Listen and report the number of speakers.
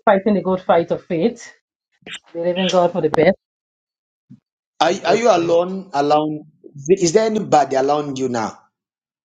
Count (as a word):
two